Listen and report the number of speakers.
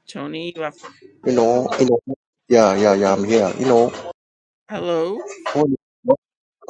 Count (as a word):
two